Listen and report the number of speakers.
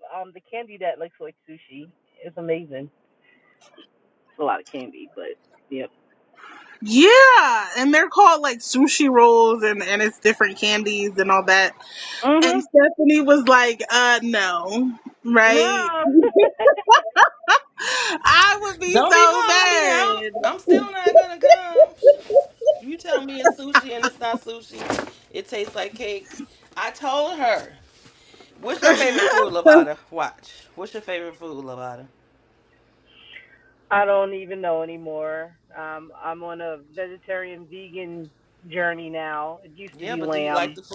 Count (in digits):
3